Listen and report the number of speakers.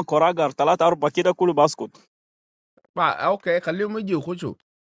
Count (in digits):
2